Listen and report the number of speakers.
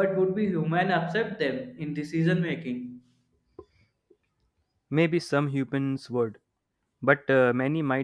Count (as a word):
two